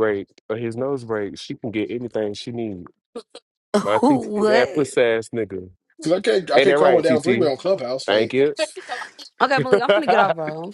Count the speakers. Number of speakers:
3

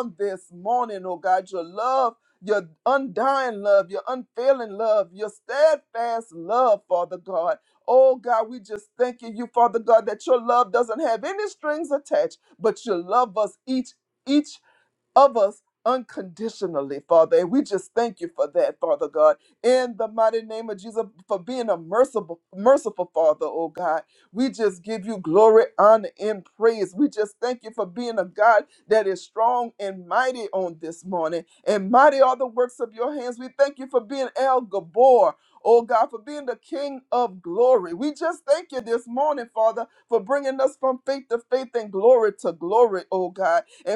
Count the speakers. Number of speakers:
1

